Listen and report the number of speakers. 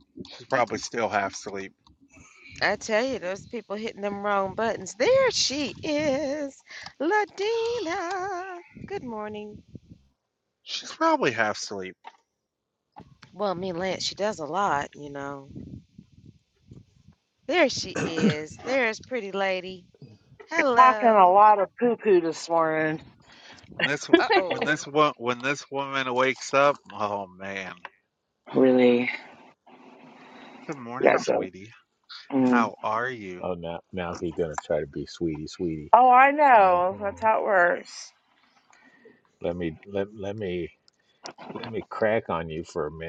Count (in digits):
4